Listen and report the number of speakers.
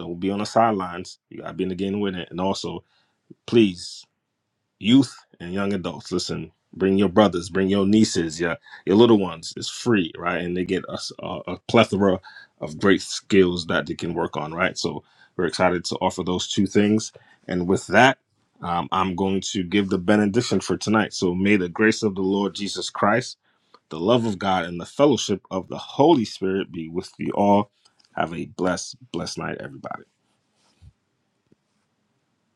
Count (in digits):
1